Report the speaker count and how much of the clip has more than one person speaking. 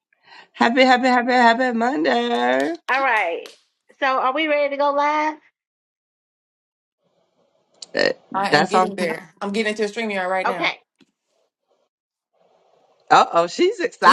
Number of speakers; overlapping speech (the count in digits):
3, about 8%